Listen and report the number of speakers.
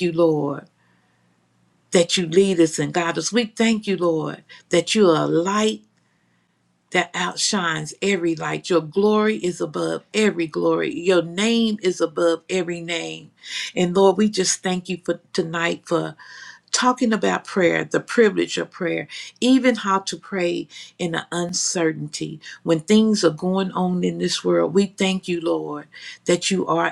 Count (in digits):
1